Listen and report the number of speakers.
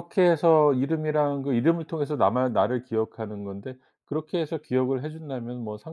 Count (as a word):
one